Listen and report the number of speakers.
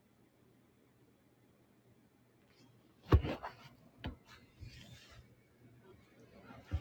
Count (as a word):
zero